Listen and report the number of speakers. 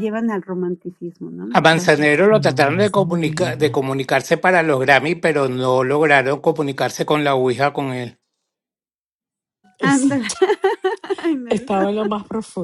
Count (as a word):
three